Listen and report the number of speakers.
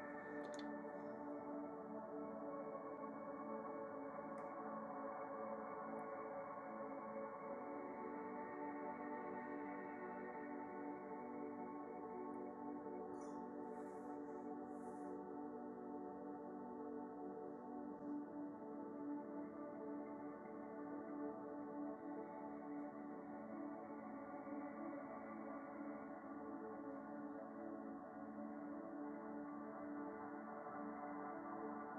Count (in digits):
0